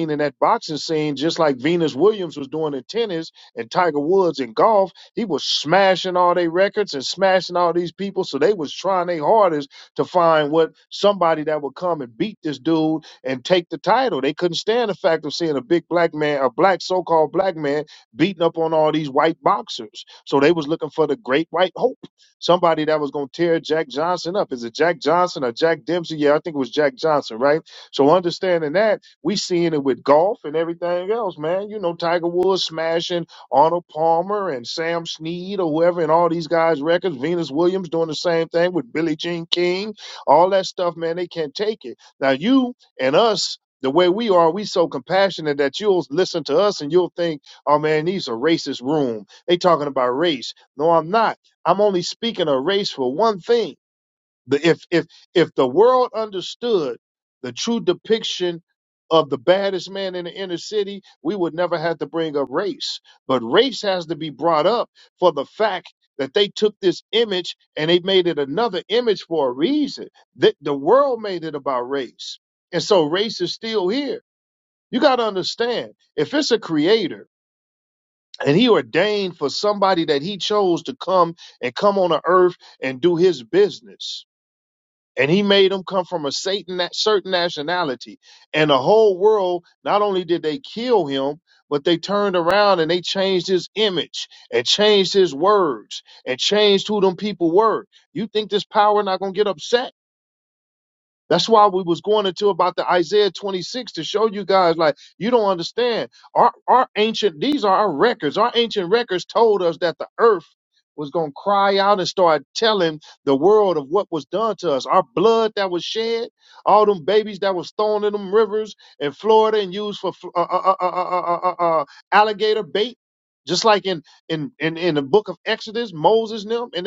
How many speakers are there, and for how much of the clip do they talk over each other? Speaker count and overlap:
1, no overlap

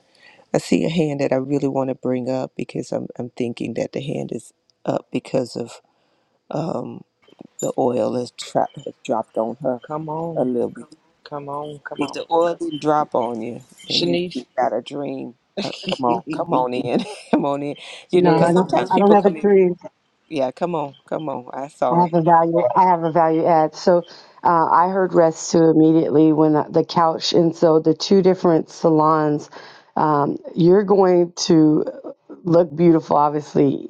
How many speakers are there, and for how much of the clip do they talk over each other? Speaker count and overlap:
3, about 7%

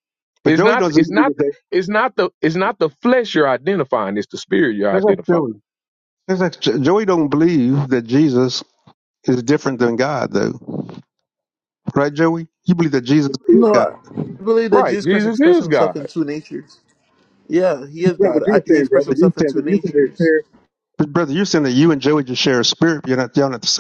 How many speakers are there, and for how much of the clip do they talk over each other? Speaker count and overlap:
3, about 21%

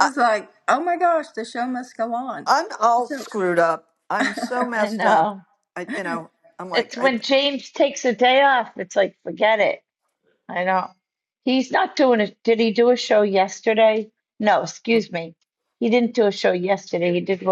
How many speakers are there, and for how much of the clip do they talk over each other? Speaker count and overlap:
3, about 7%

